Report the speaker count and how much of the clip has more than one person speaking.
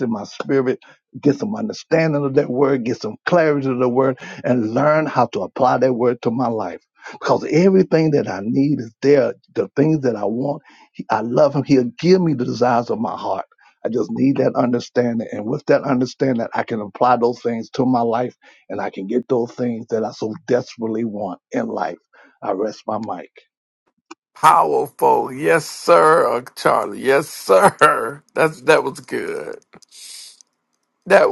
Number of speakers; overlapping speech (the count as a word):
two, no overlap